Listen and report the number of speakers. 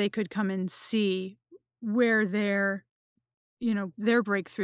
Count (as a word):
one